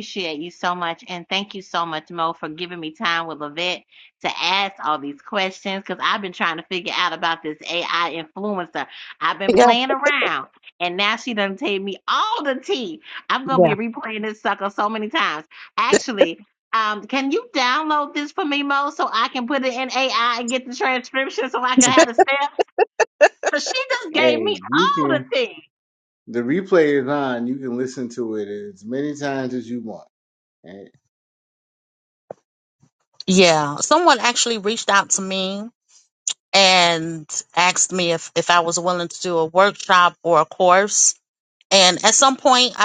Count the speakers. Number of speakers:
3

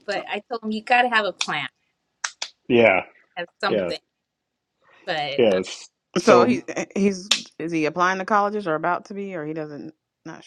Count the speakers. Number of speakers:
3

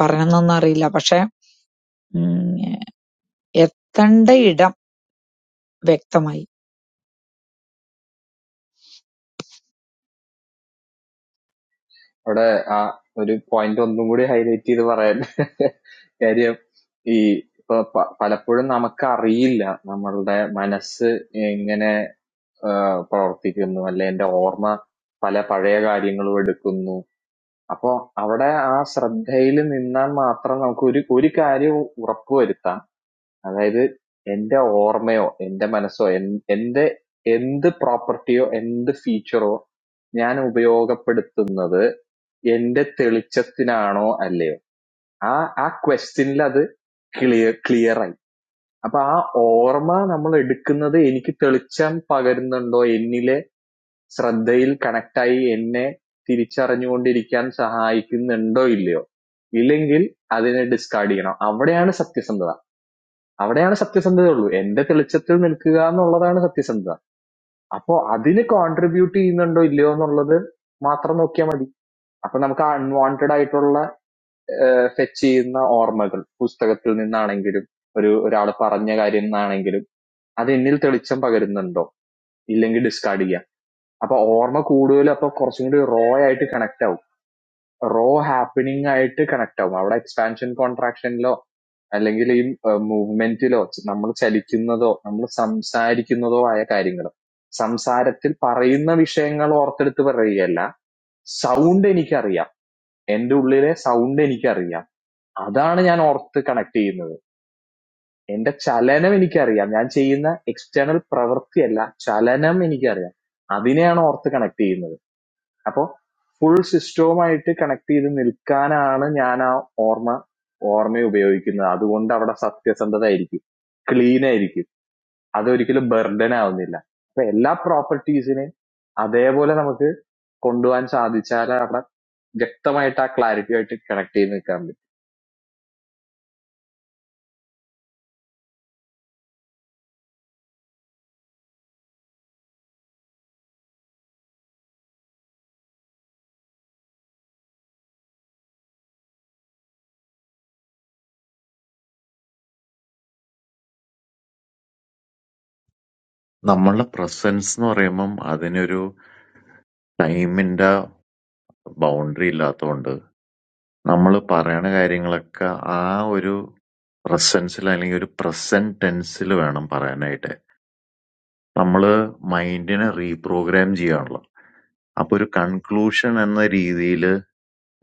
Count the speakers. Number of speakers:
3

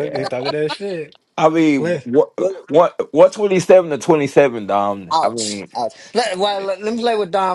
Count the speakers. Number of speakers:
3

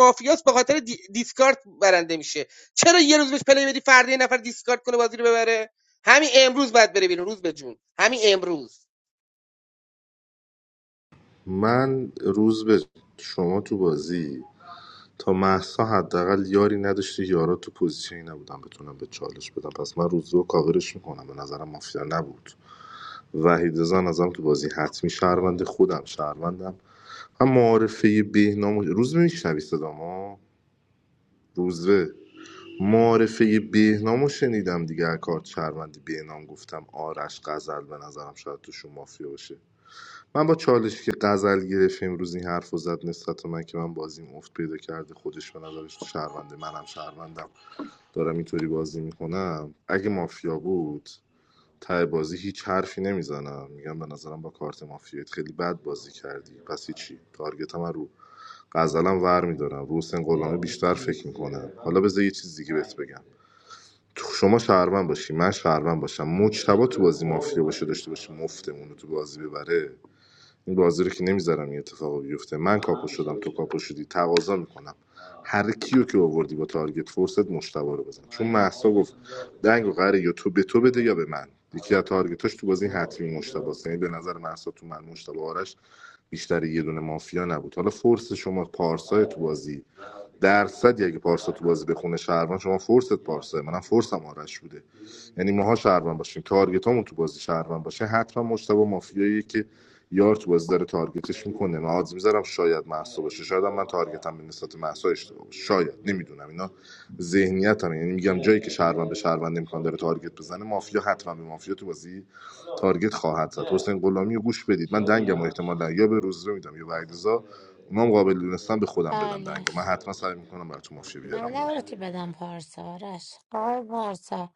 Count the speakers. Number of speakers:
3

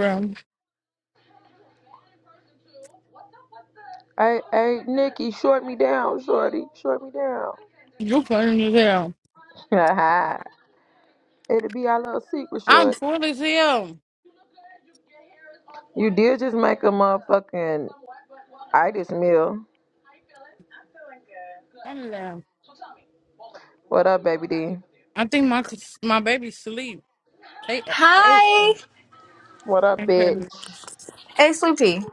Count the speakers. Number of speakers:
3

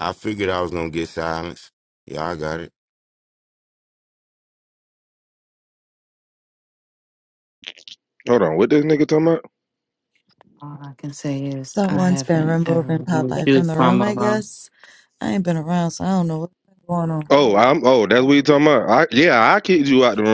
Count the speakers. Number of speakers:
4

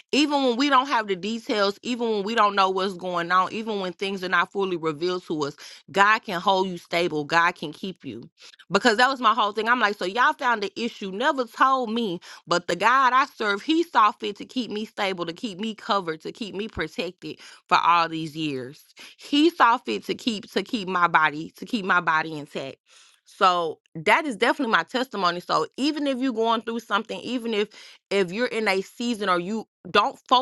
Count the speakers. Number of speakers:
1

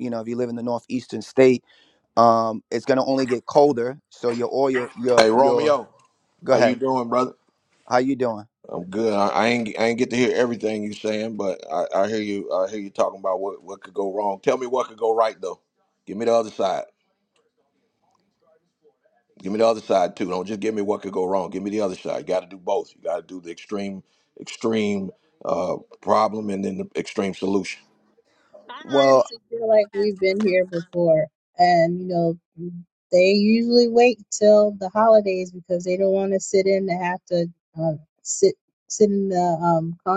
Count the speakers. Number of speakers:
3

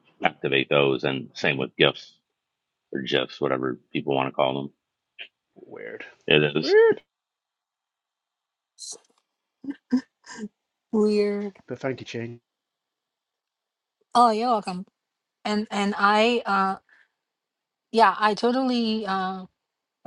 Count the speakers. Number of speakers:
3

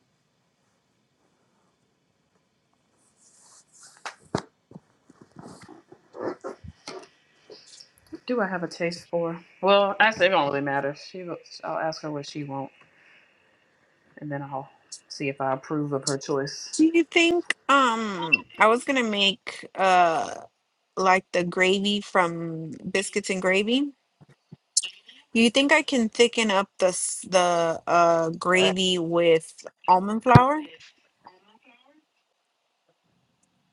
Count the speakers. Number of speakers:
2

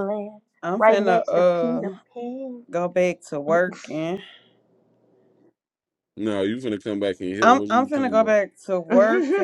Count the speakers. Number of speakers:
3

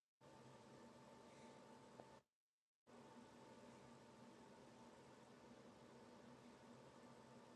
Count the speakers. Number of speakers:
0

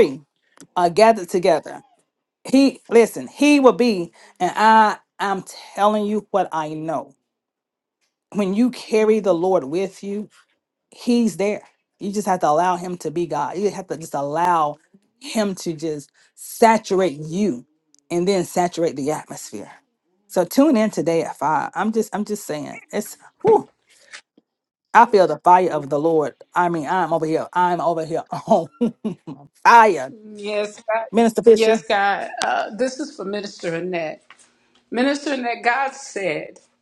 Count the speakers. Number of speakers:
2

